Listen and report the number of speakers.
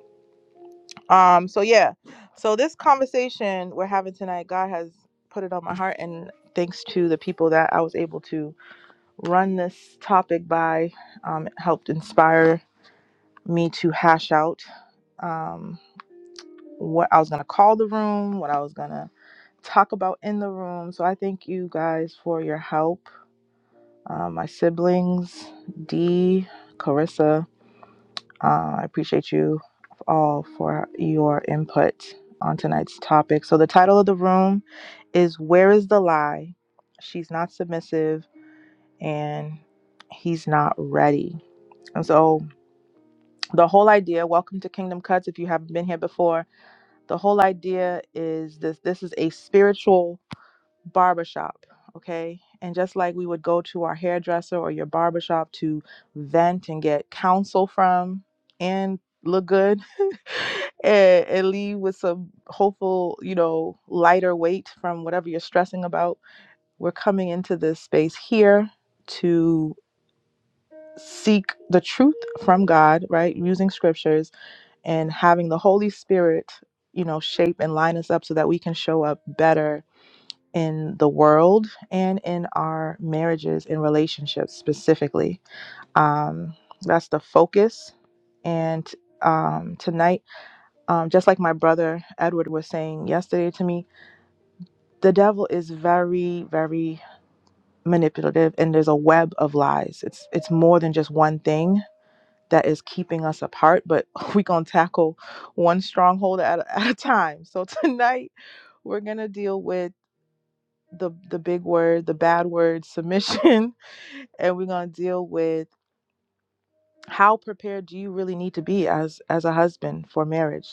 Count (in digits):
1